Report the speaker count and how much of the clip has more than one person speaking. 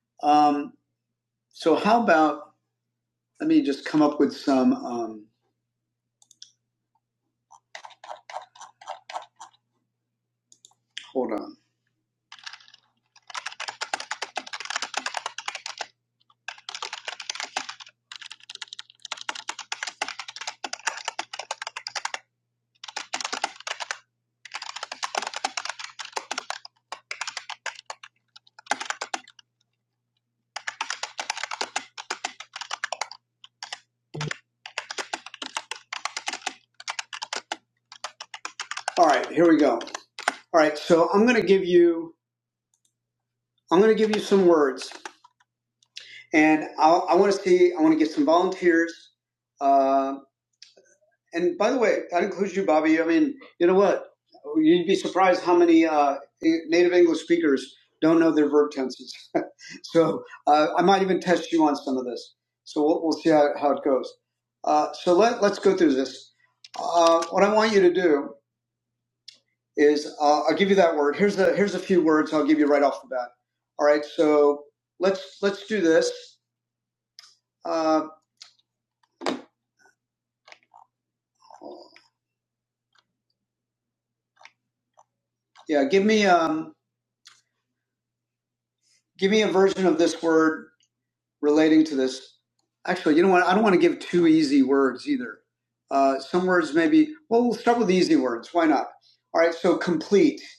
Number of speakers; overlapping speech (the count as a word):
one, no overlap